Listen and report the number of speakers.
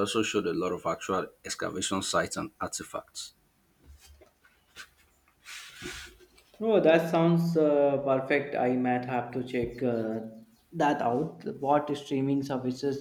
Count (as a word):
two